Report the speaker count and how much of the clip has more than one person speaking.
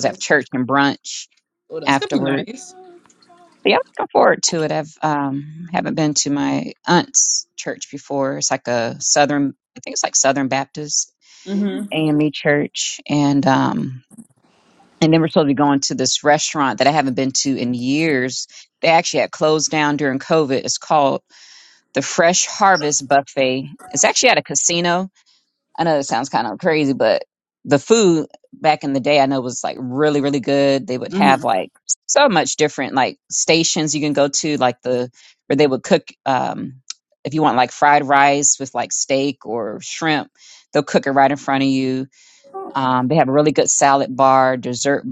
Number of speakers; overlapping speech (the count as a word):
two, about 2%